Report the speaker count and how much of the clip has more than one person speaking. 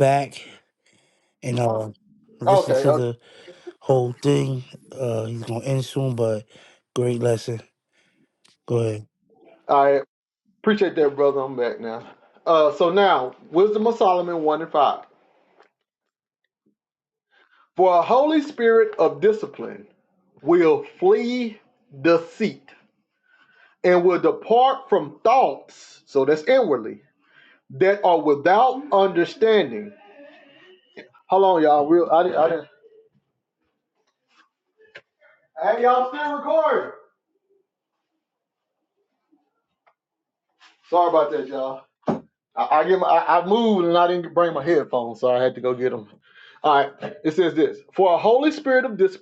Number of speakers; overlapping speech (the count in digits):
2, about 1%